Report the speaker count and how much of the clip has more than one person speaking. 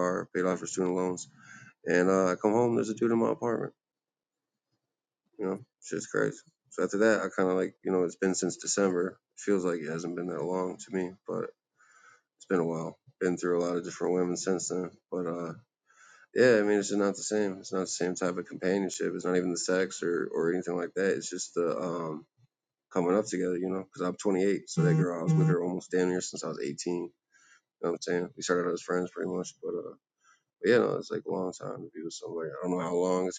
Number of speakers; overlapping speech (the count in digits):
1, no overlap